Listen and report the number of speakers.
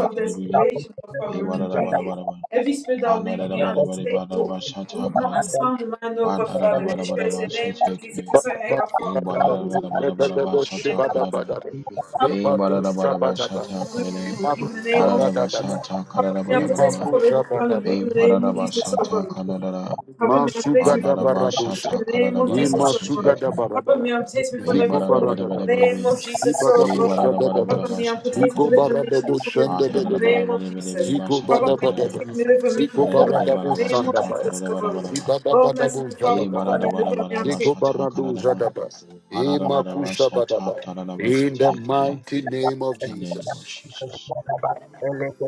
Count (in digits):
4